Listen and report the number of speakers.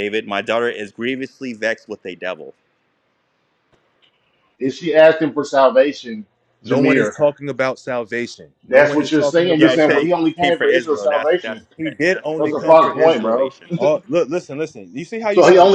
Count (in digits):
3